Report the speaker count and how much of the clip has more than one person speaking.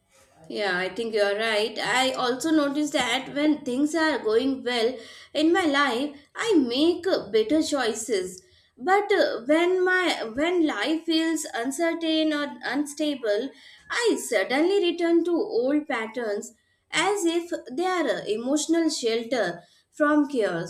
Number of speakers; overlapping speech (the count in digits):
1, no overlap